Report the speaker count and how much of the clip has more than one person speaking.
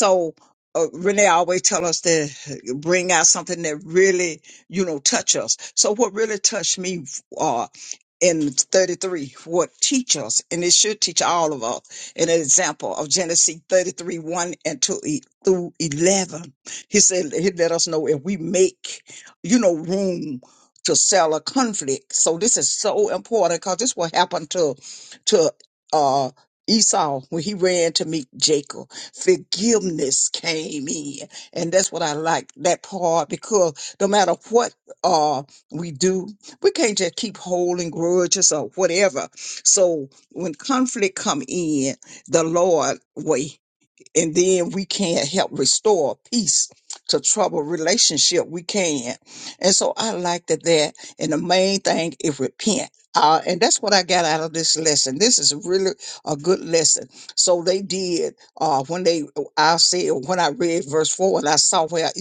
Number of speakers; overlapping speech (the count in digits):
1, no overlap